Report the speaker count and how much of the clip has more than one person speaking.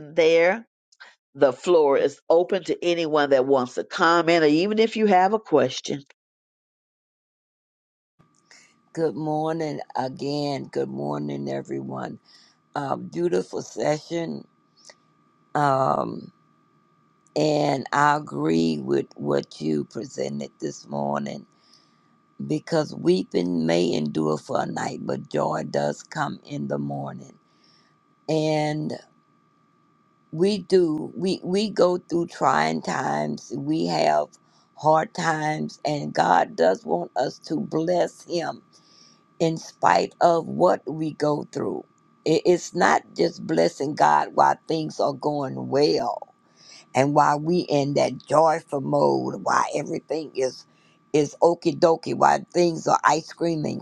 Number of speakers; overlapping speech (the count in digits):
2, no overlap